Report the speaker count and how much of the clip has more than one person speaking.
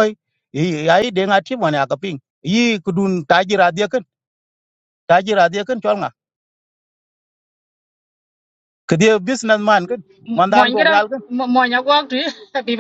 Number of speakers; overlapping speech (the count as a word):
two, about 4%